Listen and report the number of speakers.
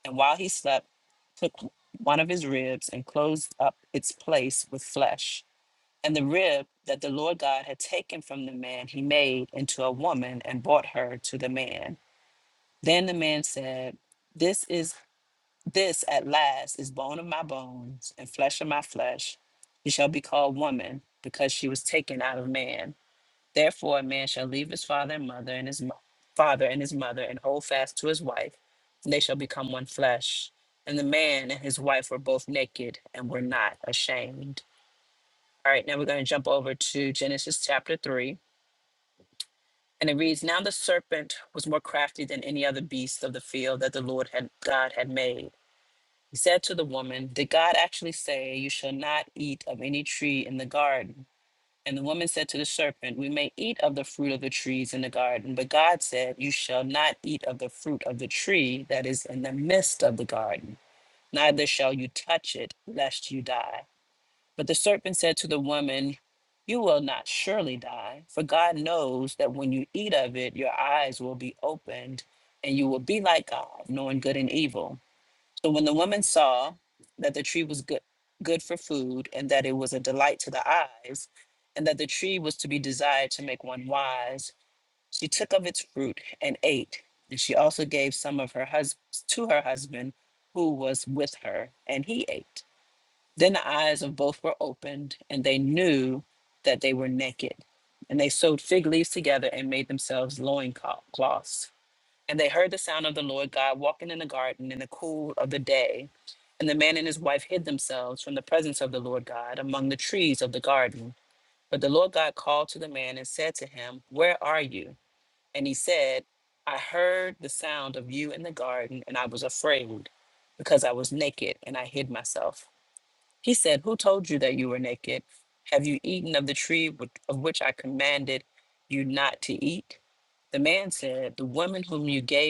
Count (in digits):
1